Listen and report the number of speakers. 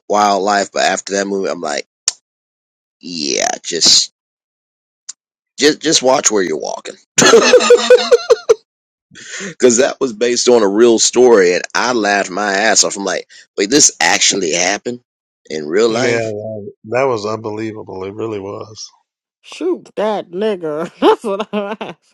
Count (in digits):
3